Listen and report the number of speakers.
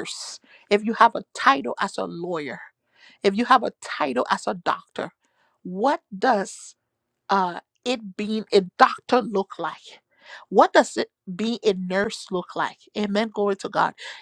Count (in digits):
1